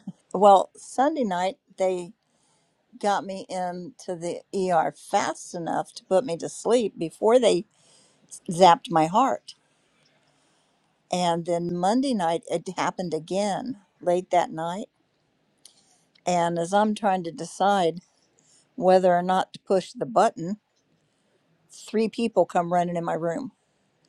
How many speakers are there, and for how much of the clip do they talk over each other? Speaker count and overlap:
one, no overlap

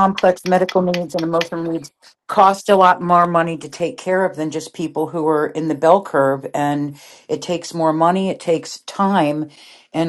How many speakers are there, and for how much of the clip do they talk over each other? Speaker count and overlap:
one, no overlap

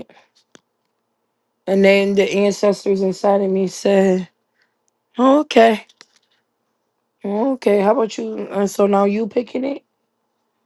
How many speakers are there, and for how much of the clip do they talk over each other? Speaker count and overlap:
one, no overlap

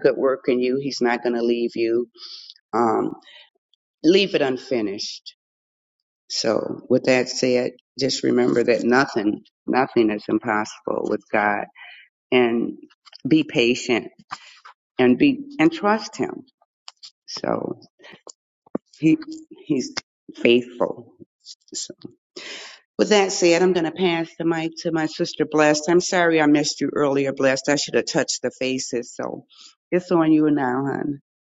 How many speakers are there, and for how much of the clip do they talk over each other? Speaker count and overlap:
one, no overlap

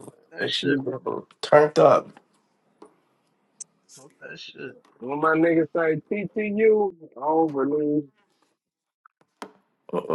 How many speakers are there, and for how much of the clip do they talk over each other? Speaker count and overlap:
three, about 5%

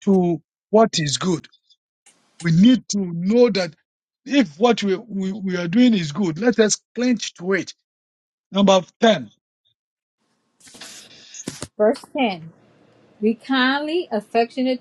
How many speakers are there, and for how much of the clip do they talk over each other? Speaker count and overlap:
two, no overlap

